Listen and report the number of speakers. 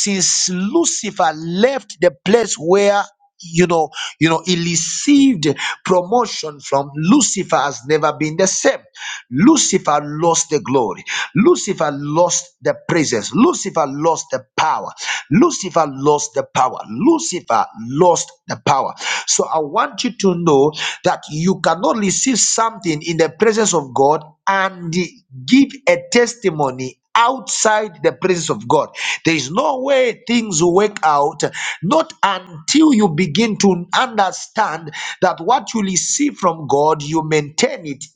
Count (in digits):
1